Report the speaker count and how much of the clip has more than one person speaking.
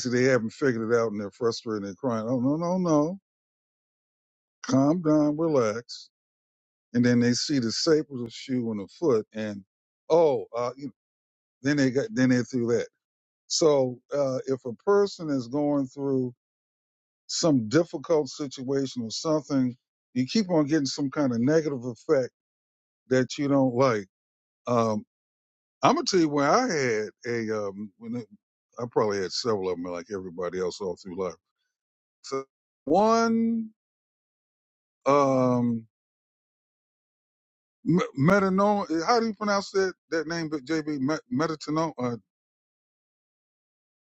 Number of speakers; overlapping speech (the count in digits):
1, no overlap